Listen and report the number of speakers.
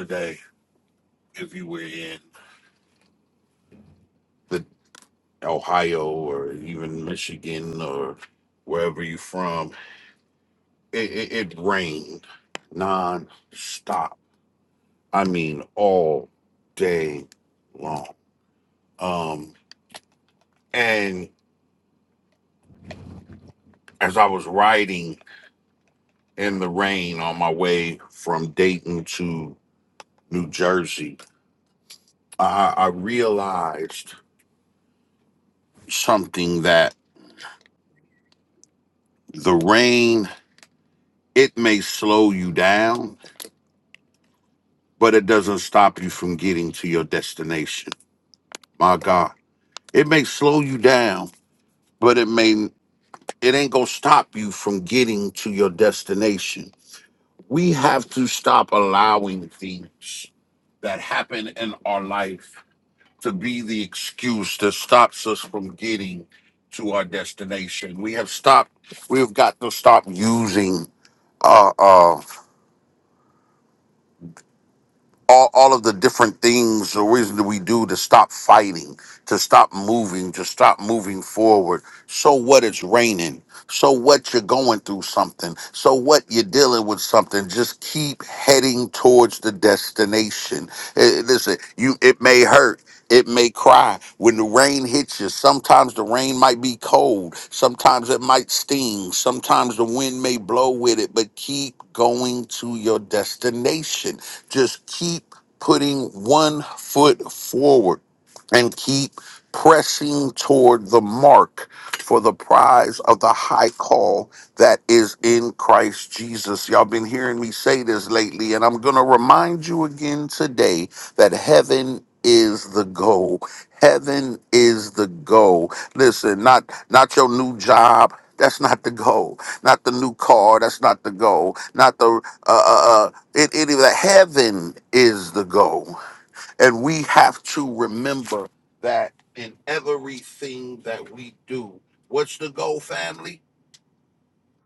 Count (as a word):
one